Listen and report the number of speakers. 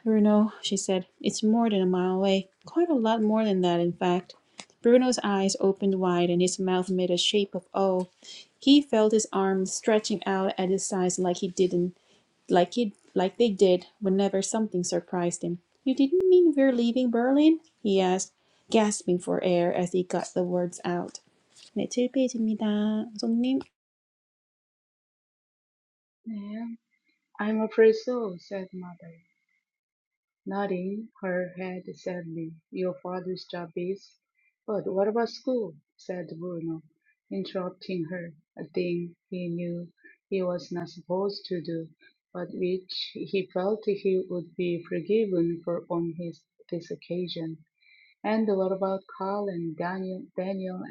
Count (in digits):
2